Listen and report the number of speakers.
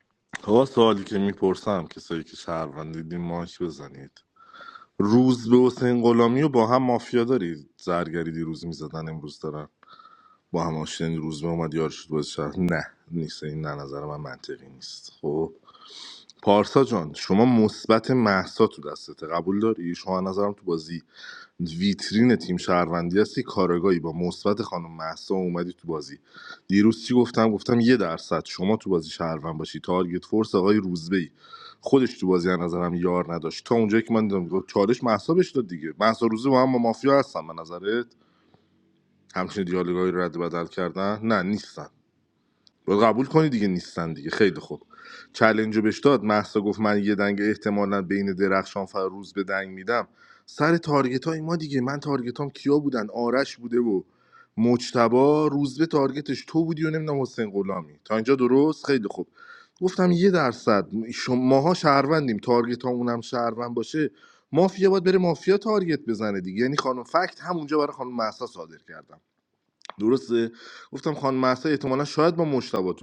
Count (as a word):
one